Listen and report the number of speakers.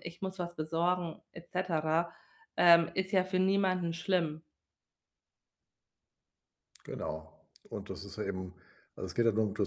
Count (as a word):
two